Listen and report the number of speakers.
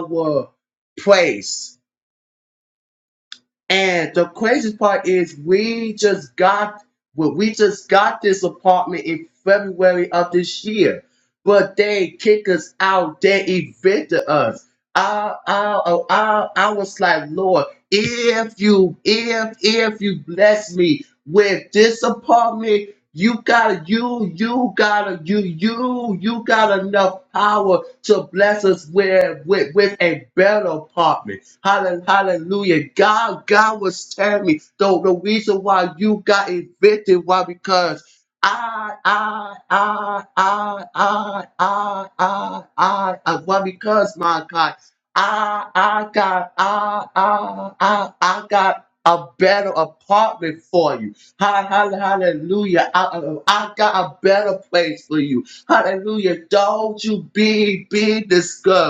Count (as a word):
one